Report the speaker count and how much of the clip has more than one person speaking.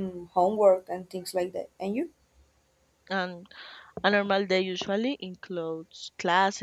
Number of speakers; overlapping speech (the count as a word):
two, no overlap